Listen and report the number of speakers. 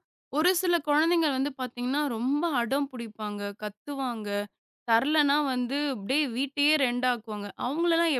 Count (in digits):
1